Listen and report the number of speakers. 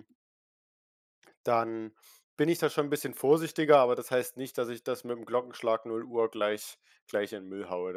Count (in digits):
1